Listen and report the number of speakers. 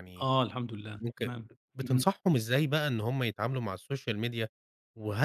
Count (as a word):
two